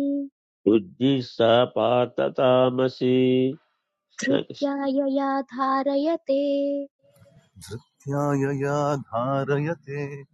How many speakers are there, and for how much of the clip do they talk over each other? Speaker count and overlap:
3, no overlap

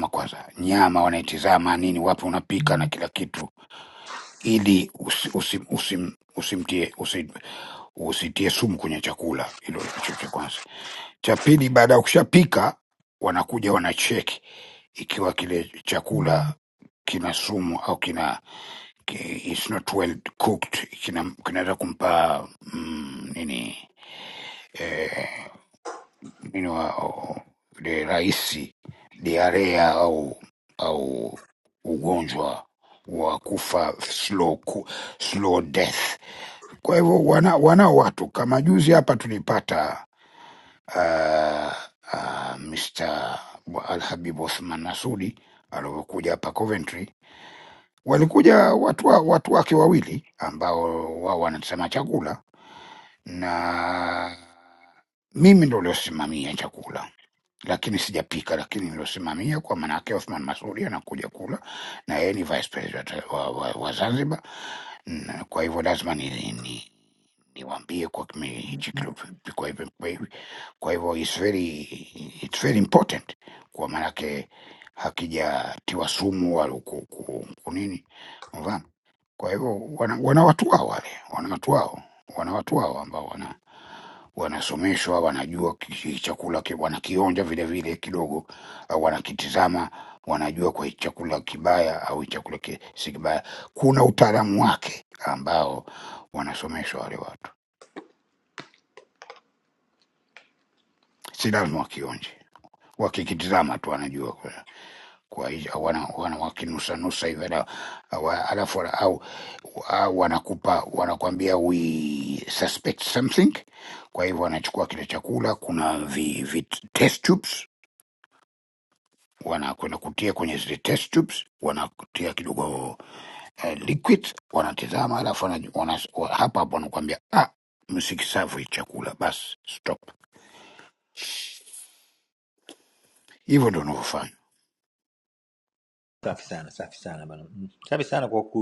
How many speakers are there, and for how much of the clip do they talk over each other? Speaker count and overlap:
2, no overlap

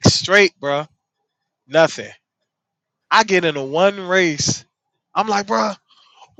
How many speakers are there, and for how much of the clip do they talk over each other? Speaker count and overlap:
1, no overlap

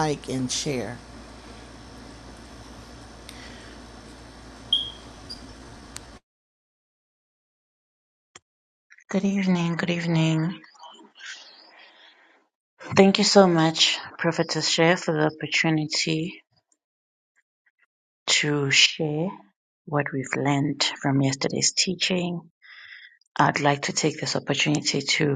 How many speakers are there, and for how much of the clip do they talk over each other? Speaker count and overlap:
2, no overlap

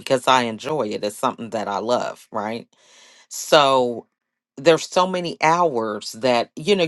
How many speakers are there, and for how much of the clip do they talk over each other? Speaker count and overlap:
1, no overlap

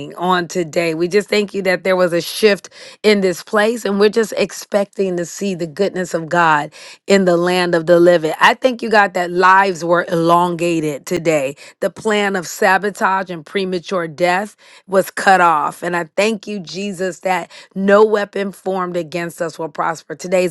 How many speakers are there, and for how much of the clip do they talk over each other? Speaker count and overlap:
1, no overlap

